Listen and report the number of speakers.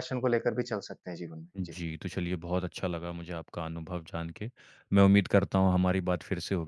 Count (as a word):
two